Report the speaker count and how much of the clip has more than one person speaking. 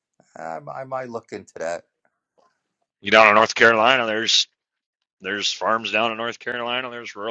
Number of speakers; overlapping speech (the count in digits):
2, no overlap